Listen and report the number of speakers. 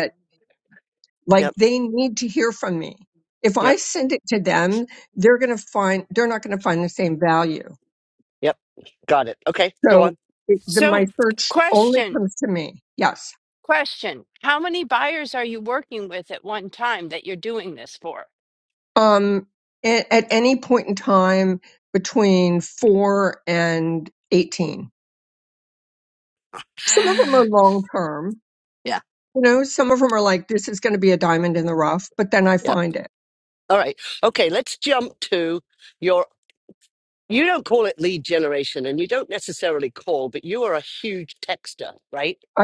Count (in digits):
3